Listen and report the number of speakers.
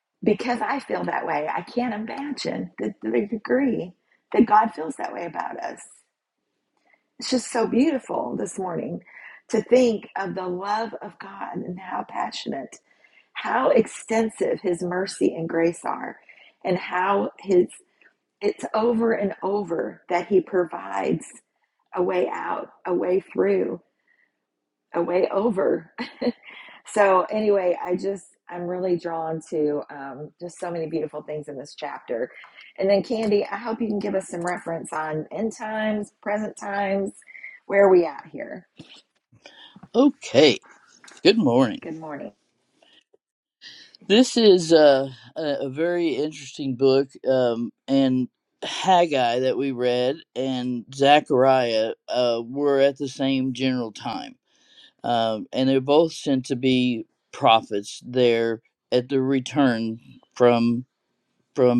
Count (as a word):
two